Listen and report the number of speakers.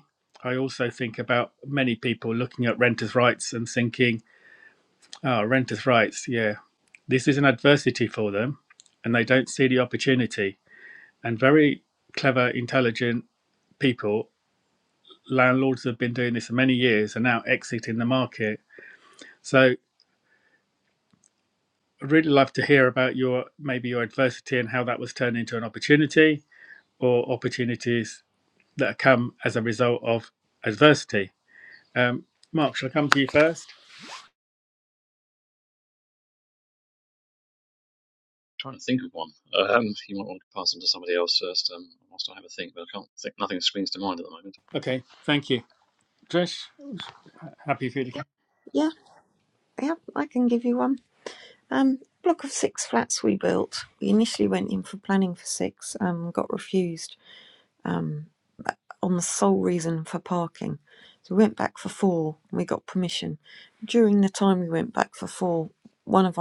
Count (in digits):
3